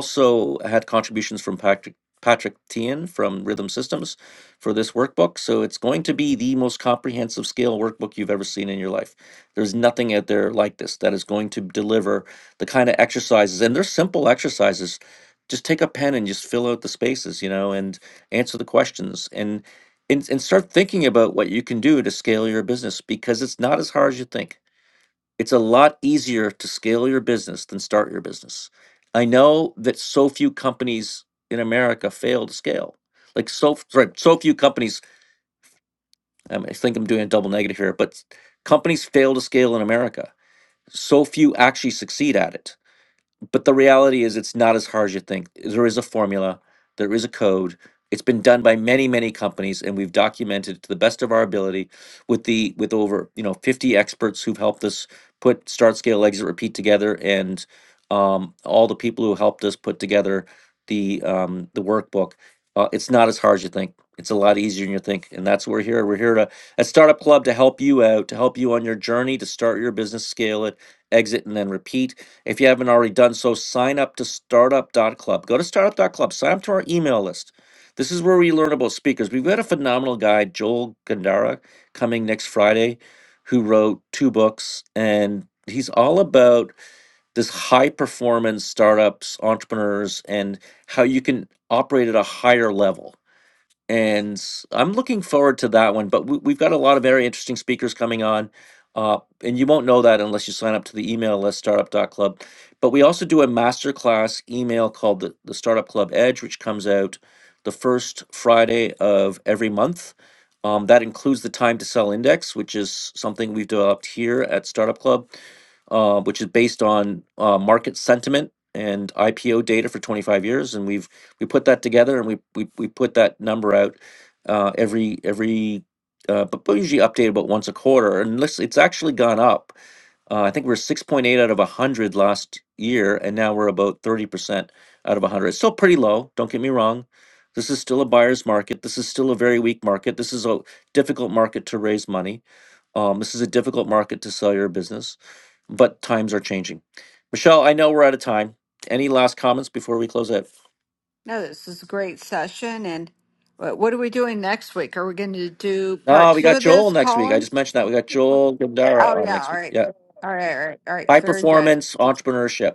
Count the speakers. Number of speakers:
2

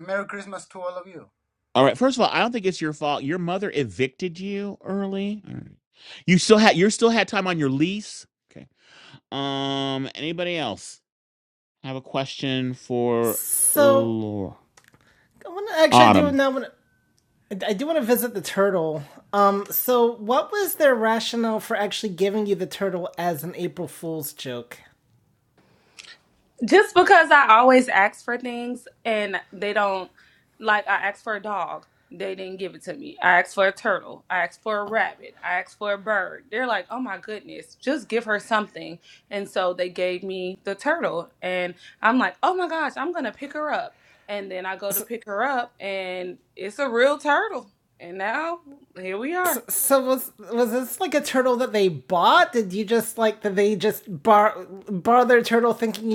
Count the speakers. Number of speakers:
4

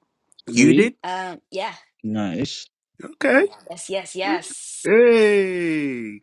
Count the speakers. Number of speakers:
3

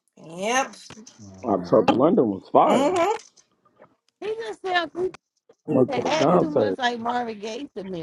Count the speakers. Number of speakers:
3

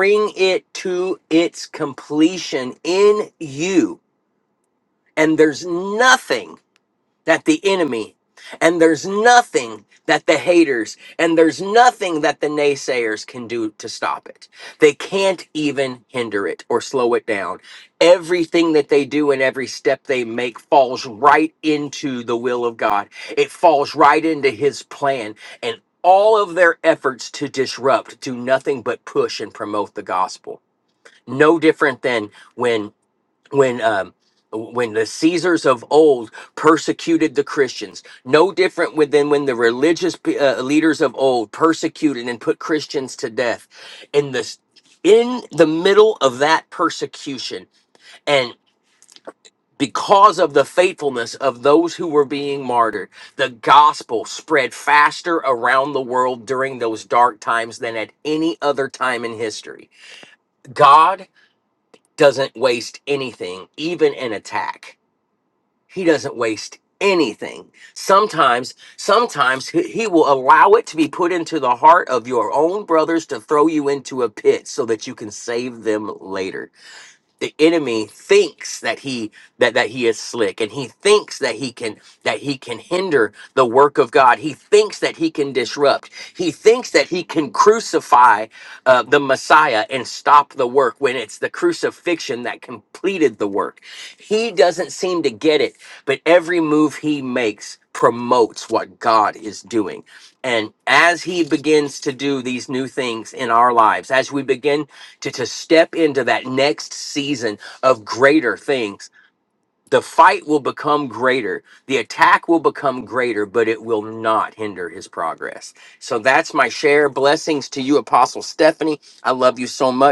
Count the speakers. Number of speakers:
1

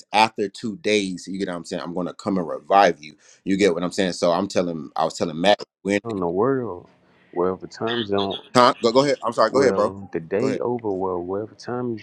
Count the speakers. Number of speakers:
2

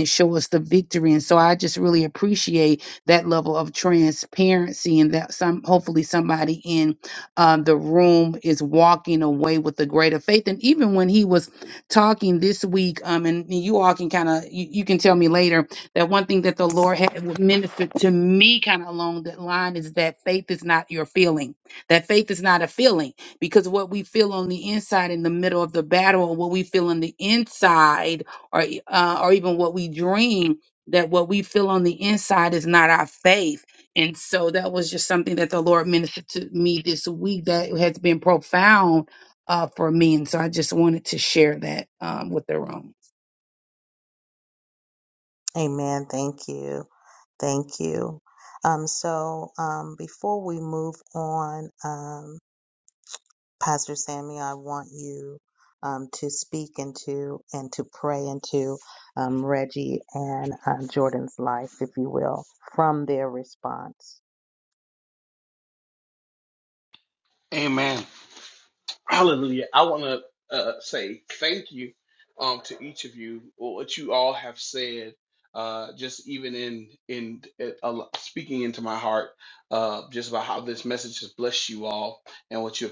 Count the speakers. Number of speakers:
3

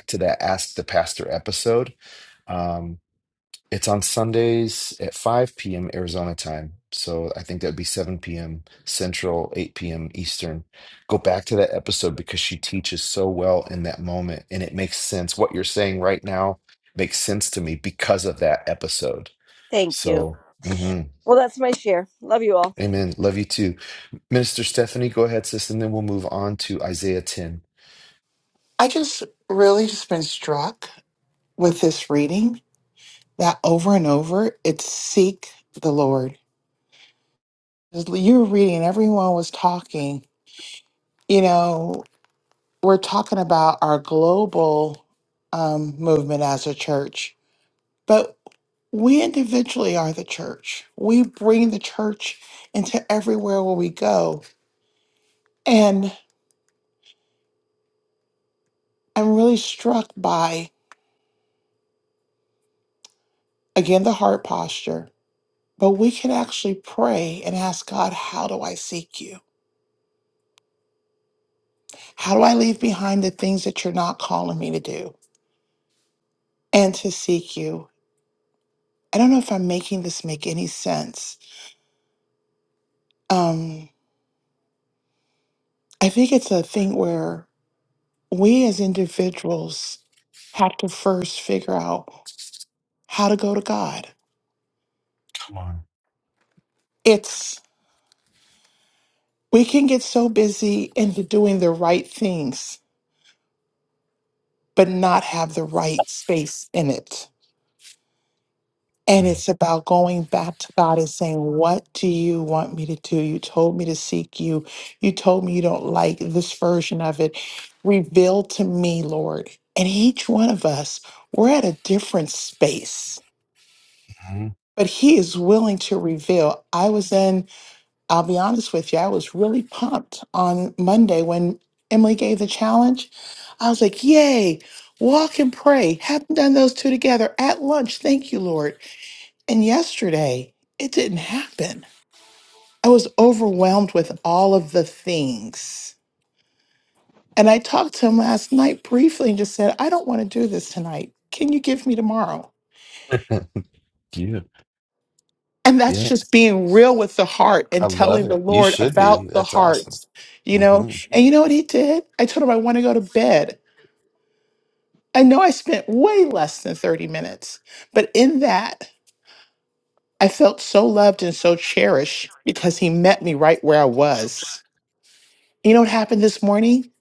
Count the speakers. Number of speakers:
3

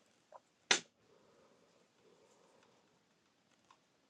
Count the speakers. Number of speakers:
0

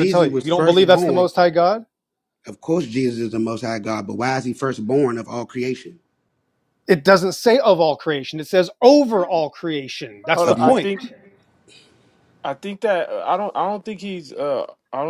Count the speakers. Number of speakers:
3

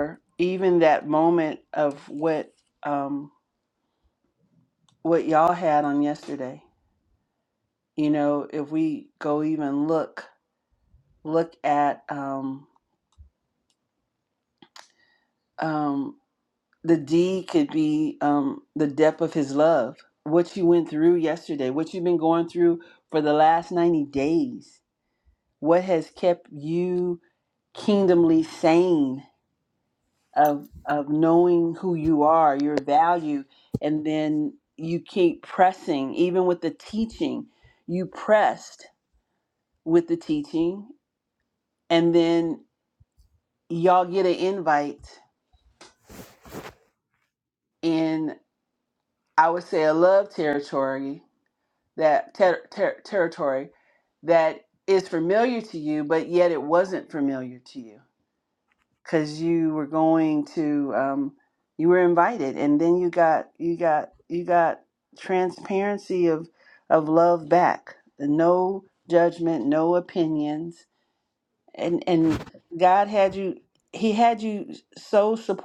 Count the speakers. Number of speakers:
1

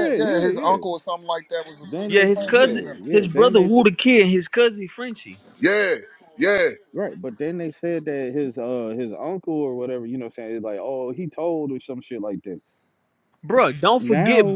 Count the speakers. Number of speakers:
3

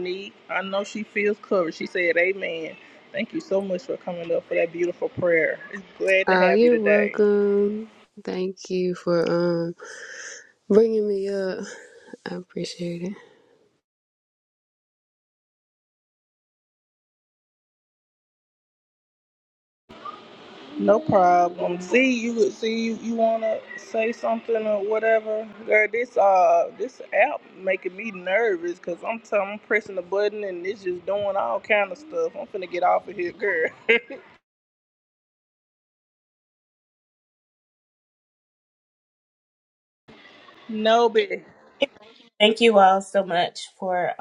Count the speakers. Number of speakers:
3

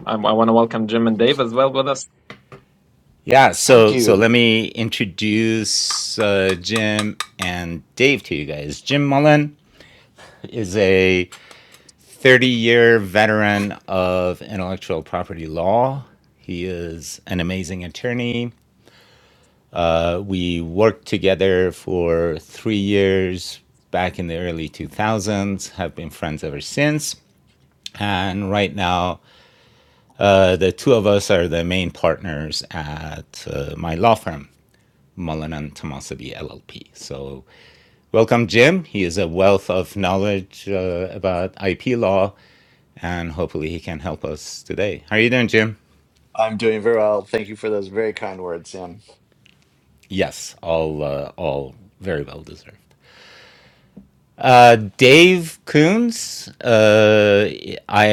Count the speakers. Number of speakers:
3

